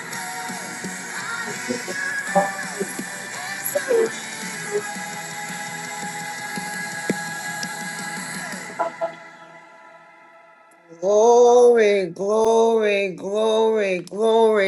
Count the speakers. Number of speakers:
1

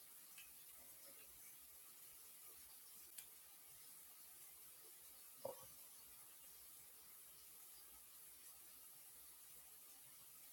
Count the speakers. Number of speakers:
0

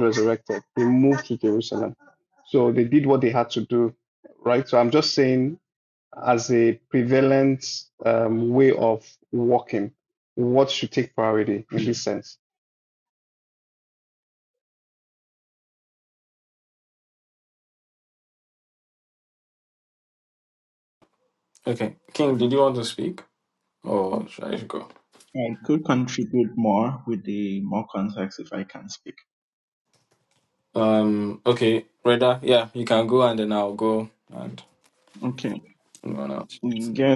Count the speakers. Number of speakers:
3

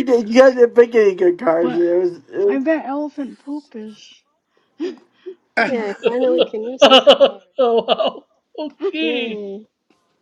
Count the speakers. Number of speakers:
4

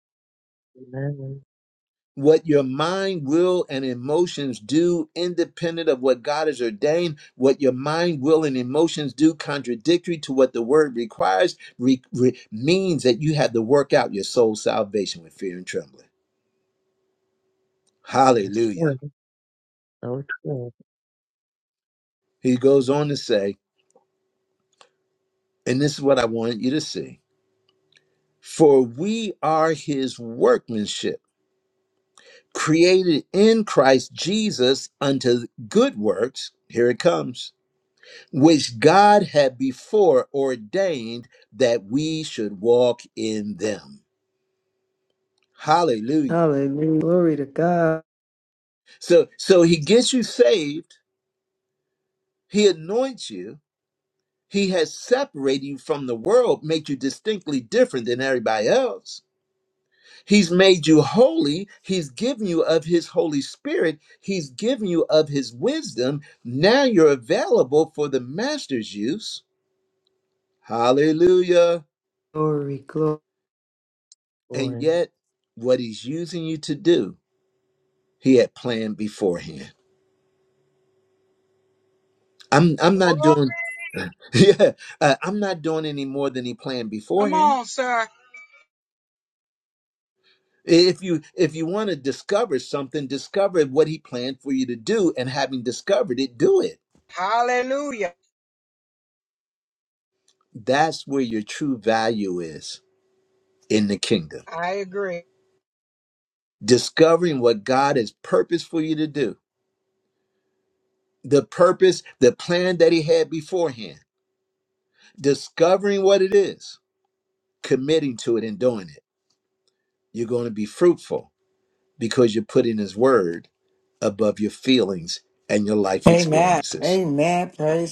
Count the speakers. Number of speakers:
5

